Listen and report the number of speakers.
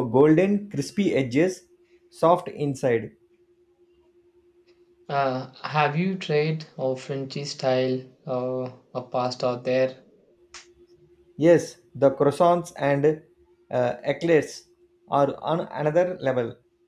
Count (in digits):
2